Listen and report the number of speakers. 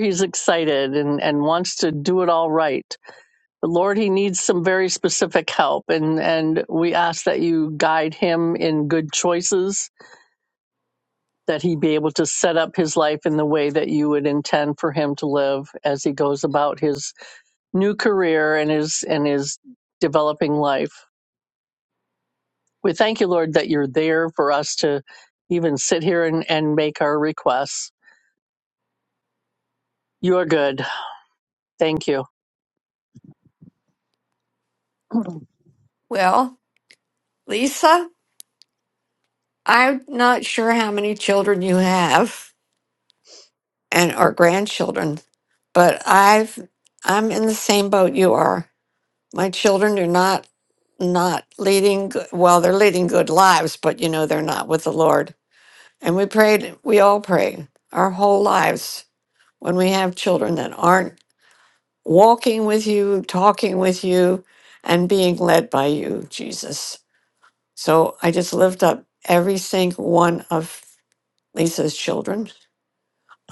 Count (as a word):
two